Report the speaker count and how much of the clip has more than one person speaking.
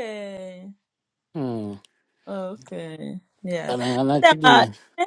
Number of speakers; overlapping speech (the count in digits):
2, about 11%